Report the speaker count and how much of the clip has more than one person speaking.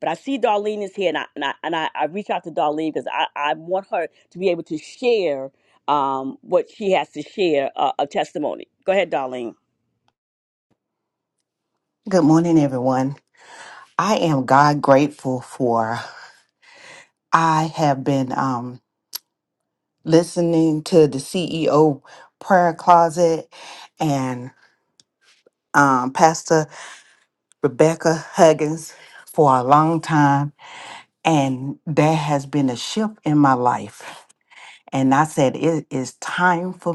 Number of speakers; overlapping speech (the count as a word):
two, no overlap